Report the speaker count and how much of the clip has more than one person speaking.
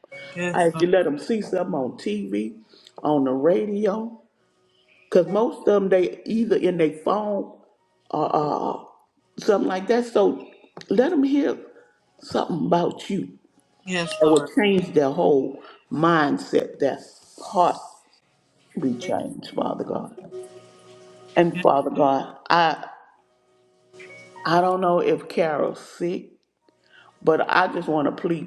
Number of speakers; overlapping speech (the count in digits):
2, about 3%